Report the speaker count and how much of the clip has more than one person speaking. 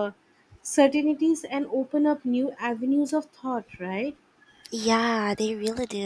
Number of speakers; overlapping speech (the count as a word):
two, no overlap